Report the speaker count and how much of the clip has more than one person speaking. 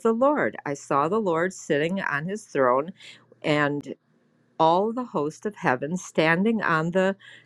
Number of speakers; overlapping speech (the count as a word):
one, no overlap